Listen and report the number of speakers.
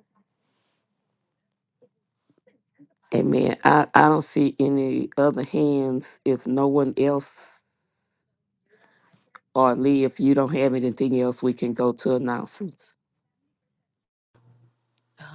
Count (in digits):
1